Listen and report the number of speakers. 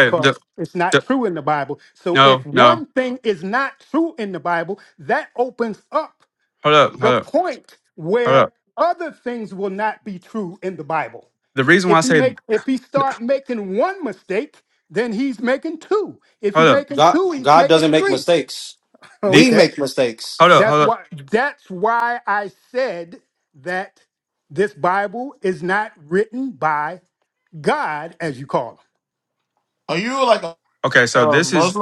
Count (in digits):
4